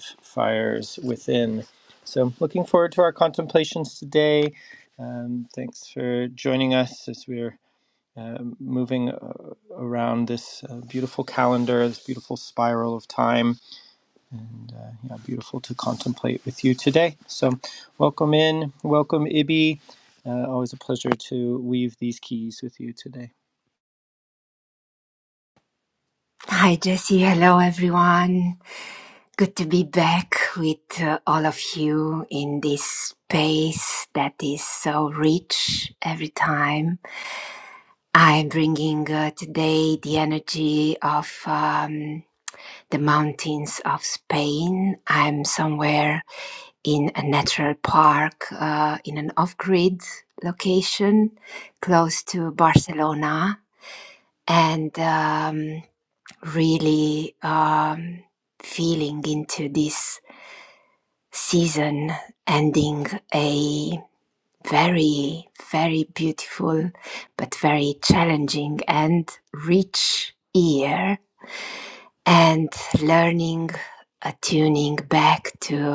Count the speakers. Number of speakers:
two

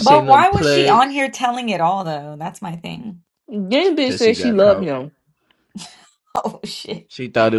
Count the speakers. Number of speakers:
three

